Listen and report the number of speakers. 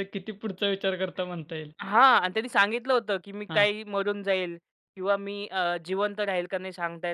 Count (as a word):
two